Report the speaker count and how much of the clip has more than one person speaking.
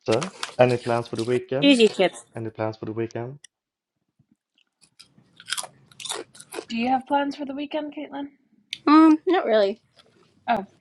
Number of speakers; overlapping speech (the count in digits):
3, about 1%